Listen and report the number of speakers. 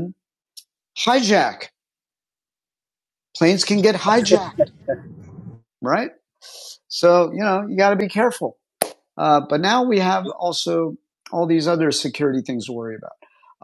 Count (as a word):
one